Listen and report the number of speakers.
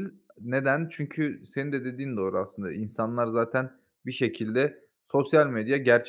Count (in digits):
1